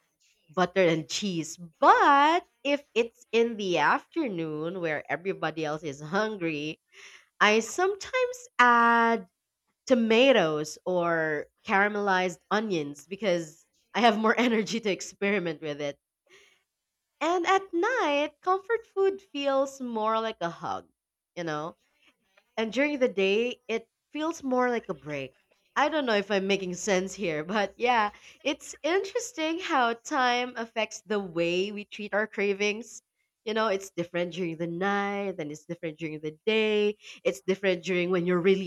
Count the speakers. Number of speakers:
one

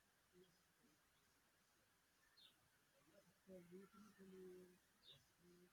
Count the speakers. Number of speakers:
zero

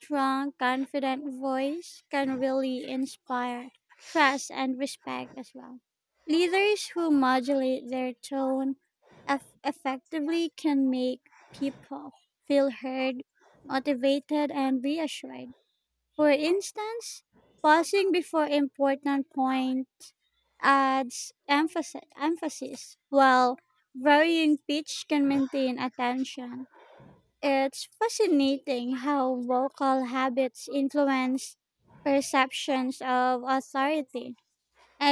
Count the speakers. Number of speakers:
one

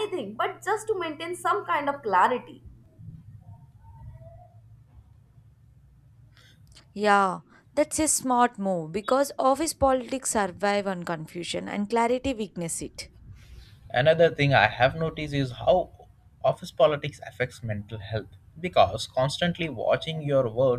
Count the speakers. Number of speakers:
three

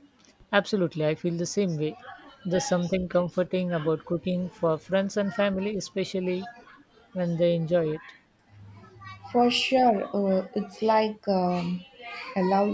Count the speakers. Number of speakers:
two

